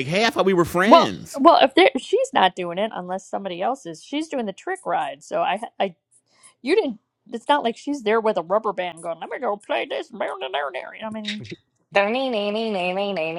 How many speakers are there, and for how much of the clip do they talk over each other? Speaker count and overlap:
three, about 2%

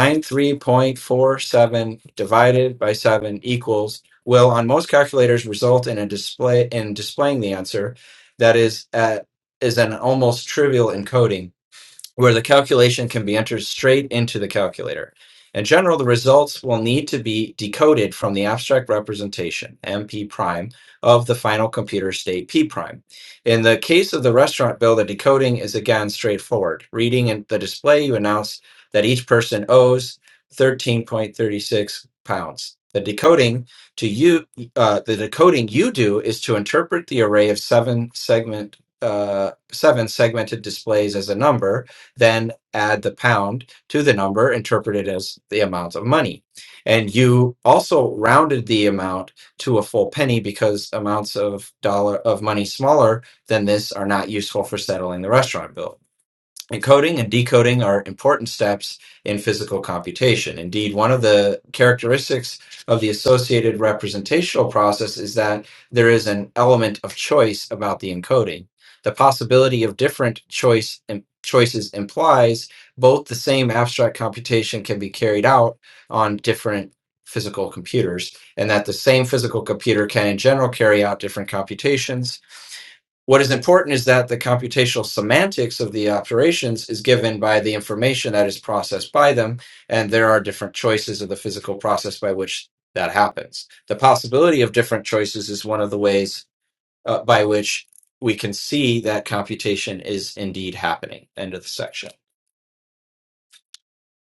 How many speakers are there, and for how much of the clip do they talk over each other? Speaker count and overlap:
one, no overlap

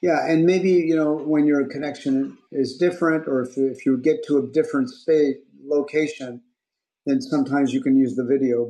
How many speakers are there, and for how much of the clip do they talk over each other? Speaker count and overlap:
one, no overlap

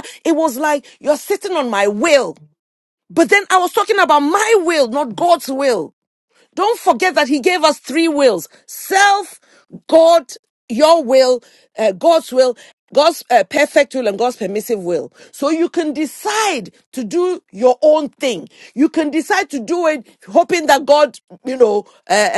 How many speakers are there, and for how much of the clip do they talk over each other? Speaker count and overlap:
one, no overlap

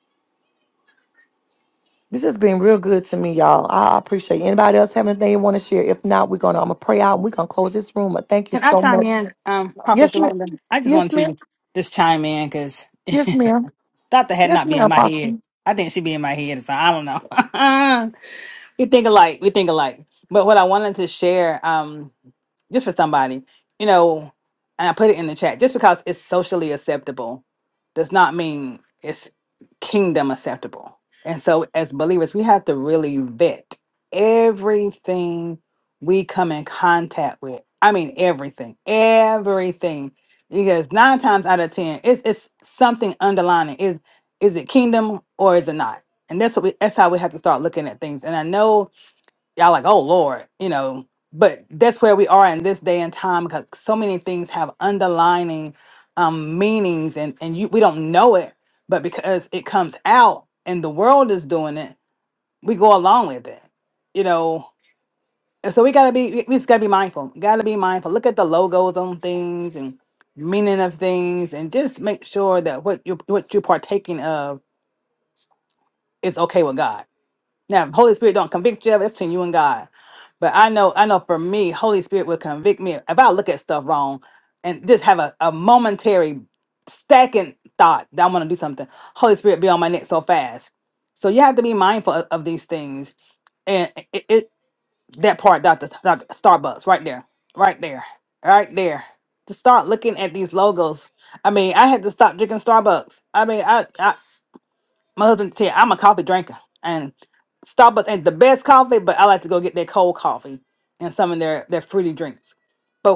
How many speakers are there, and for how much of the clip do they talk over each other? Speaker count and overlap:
two, about 2%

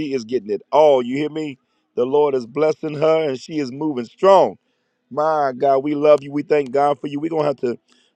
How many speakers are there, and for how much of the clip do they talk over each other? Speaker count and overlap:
one, no overlap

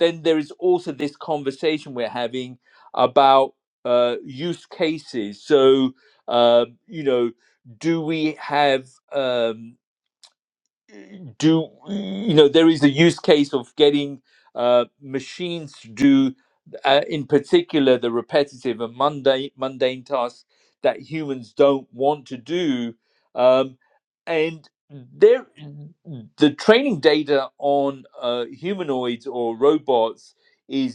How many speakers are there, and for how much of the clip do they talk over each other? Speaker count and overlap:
one, no overlap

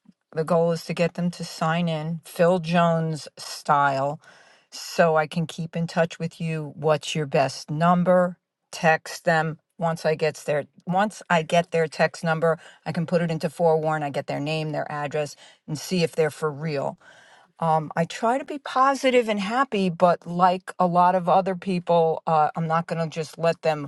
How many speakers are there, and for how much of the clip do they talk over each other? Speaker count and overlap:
one, no overlap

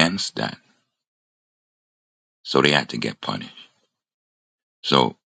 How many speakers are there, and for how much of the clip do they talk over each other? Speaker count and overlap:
one, no overlap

